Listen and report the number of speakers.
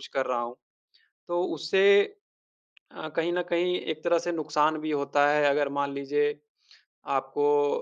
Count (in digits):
1